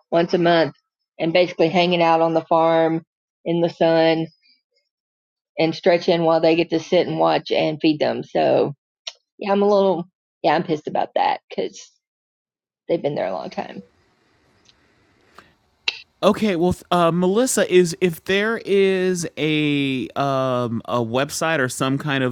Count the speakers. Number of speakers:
2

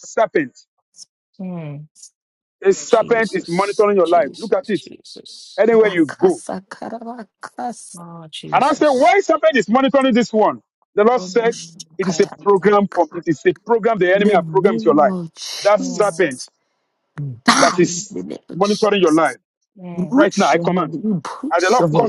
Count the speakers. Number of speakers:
3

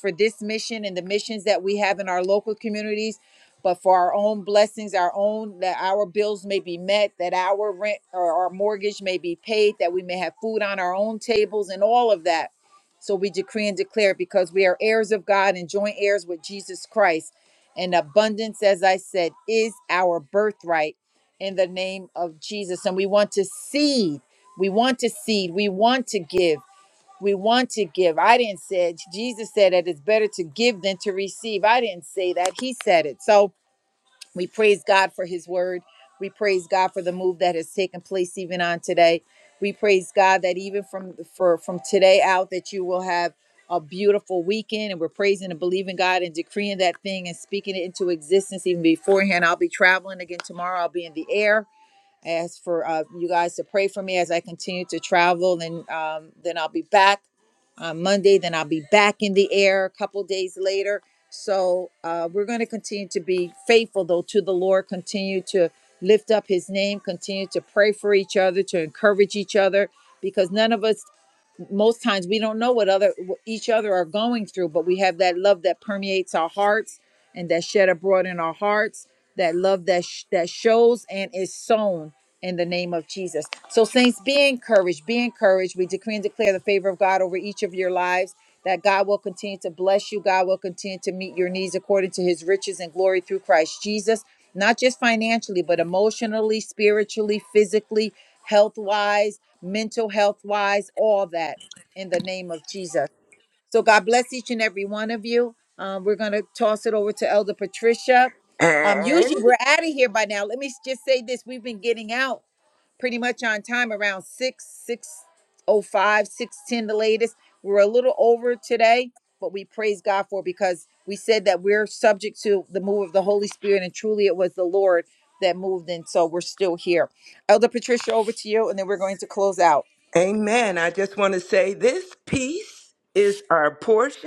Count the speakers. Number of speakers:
2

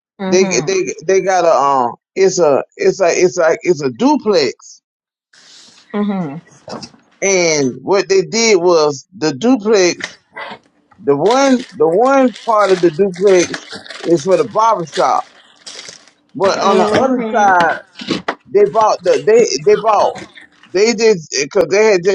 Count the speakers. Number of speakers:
2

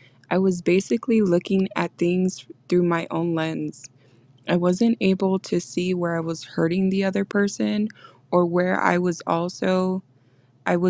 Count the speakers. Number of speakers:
1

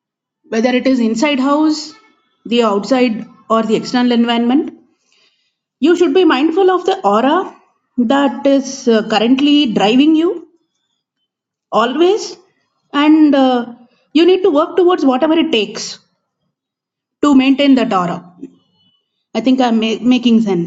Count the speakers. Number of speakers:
1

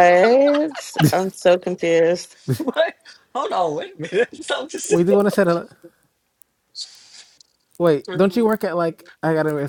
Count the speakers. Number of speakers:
3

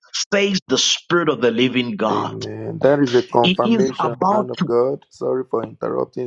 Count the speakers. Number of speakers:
2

